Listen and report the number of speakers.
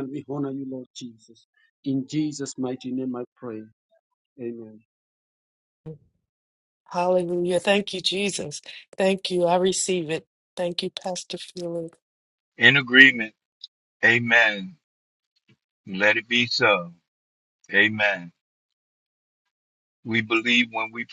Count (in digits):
3